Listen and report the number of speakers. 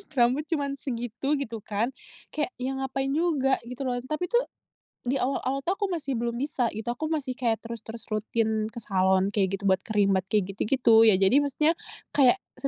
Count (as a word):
one